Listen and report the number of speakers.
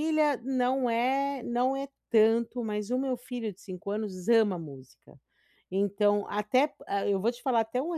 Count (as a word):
one